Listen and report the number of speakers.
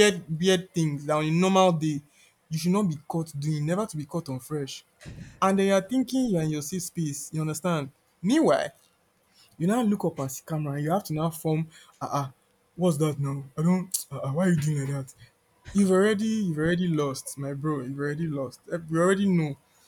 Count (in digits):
1